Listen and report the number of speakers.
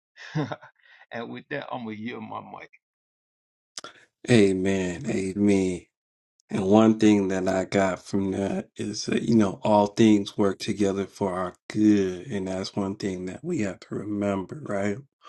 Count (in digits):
2